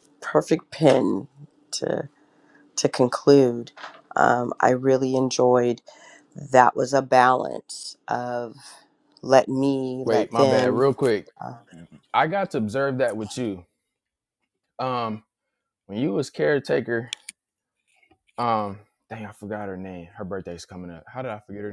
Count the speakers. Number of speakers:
2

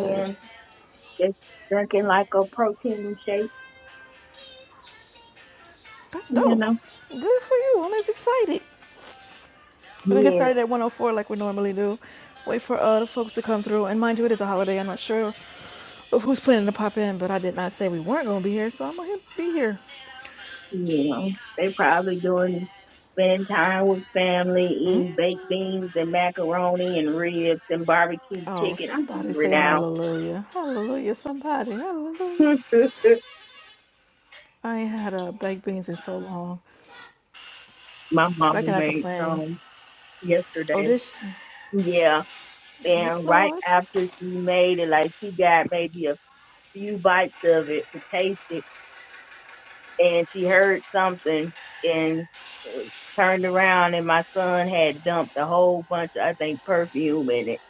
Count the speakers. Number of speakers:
2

